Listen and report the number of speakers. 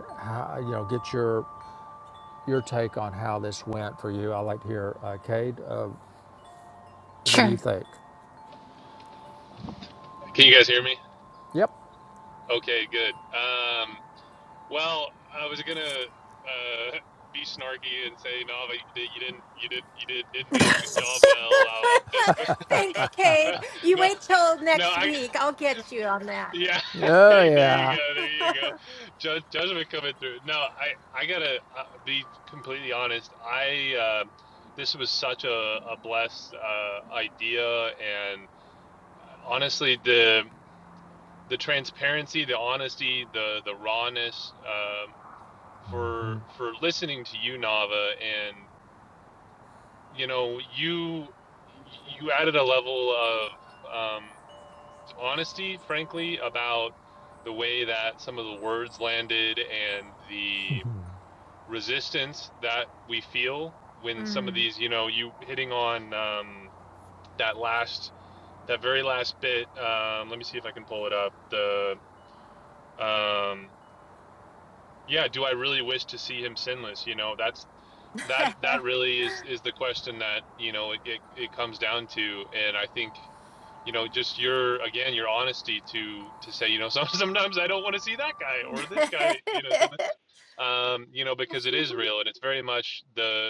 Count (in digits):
3